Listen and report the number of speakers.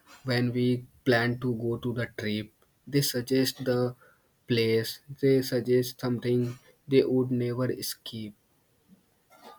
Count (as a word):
one